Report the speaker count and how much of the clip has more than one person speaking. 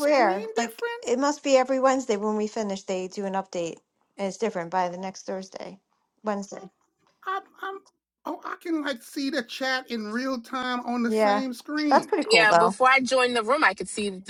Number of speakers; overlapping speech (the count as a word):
three, about 14%